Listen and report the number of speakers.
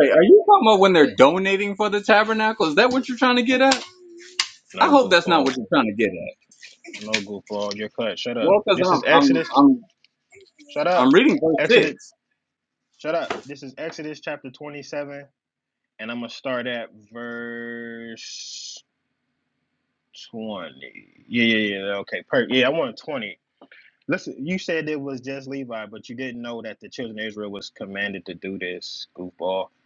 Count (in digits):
2